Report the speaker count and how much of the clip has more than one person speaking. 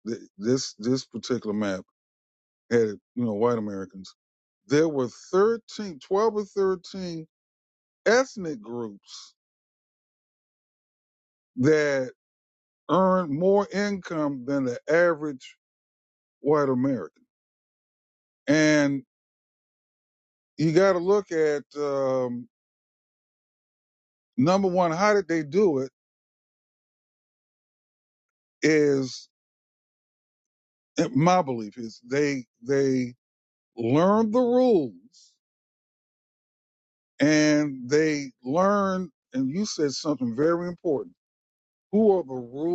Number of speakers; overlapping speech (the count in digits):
1, no overlap